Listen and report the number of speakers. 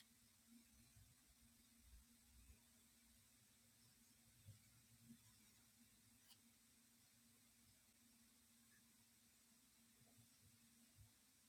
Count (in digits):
0